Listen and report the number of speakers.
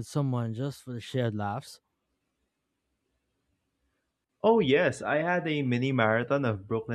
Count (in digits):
2